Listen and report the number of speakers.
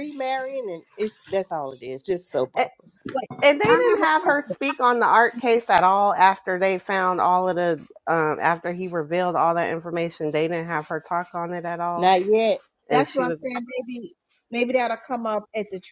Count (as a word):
three